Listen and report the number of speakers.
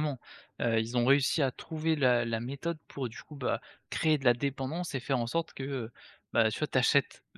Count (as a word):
one